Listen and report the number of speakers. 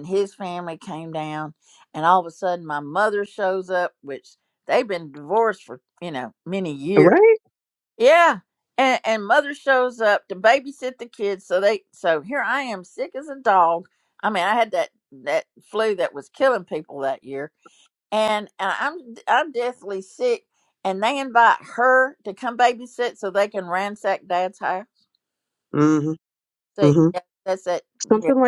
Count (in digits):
2